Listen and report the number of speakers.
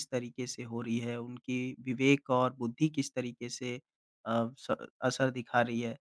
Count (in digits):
1